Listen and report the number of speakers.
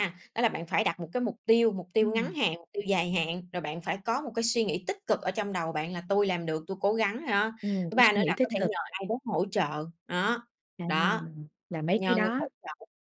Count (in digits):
2